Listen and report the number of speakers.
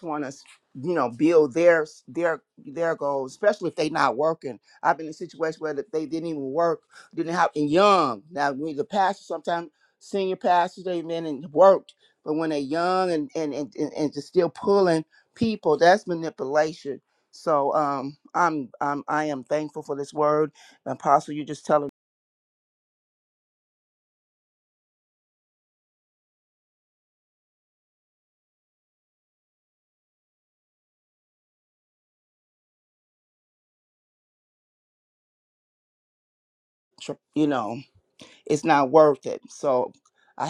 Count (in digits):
1